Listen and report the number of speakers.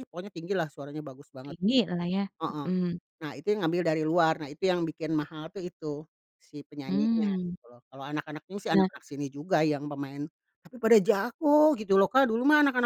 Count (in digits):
2